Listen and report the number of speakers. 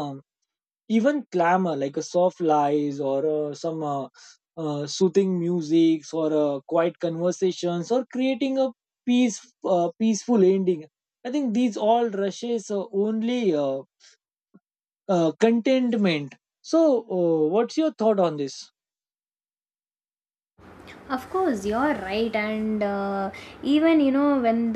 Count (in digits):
2